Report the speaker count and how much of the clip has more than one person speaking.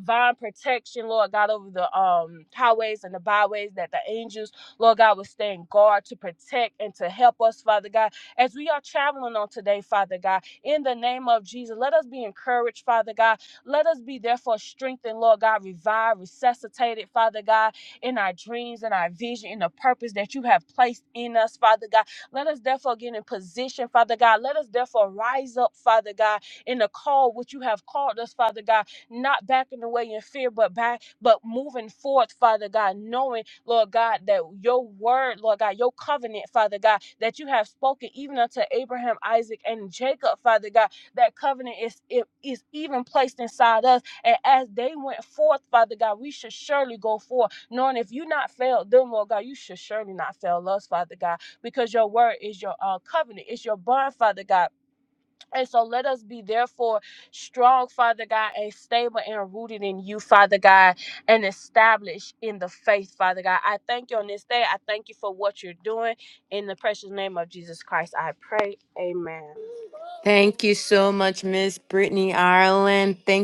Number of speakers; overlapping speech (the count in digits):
2, no overlap